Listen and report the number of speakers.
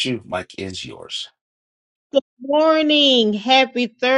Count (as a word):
two